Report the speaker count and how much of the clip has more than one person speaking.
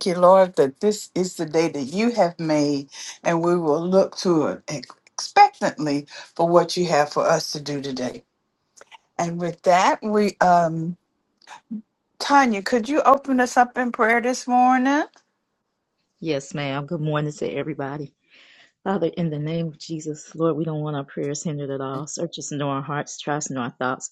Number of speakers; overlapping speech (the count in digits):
2, no overlap